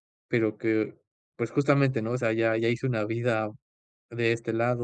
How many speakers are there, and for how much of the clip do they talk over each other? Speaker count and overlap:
1, no overlap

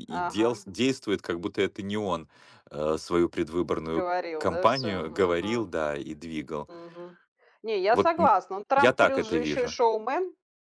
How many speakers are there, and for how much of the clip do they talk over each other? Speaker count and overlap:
2, about 29%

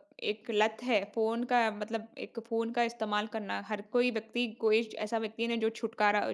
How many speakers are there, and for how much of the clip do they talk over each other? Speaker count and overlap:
1, no overlap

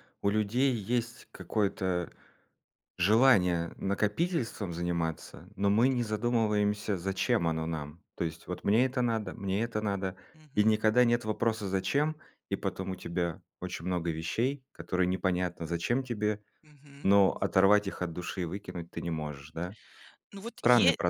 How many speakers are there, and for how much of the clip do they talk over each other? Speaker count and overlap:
2, about 2%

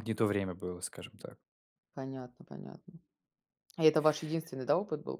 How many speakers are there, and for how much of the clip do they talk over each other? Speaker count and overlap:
2, no overlap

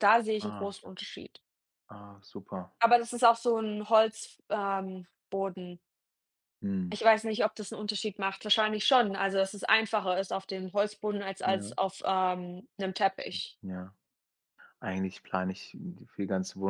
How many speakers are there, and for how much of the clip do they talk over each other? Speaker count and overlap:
2, about 3%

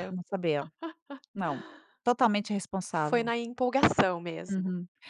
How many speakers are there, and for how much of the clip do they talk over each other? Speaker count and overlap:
2, about 7%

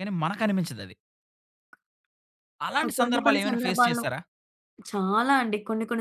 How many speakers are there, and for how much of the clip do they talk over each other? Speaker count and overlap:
2, about 21%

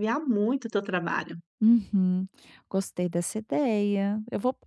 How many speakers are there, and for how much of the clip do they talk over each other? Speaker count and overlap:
2, no overlap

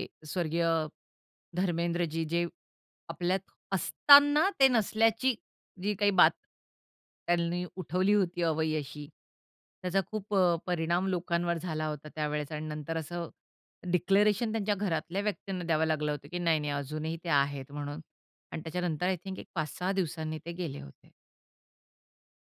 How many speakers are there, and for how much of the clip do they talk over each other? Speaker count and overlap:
1, no overlap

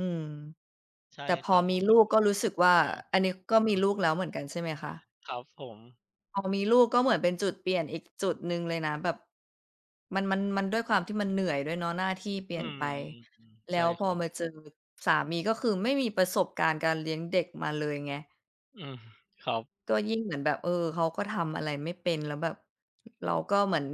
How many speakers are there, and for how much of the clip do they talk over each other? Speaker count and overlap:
2, about 4%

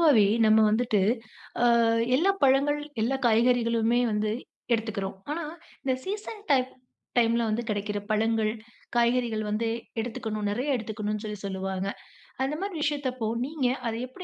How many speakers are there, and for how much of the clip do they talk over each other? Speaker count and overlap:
1, no overlap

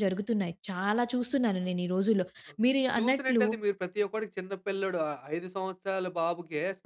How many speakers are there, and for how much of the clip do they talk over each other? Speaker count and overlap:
2, about 7%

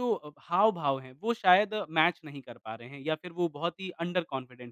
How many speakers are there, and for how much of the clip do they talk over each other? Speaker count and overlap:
1, no overlap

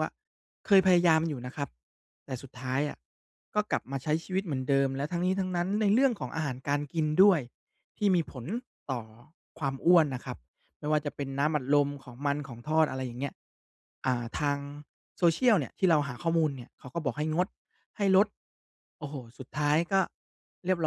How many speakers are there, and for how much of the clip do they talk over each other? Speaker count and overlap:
1, no overlap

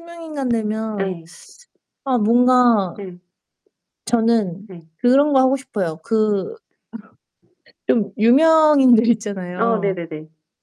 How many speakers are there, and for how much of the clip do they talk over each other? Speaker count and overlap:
2, about 5%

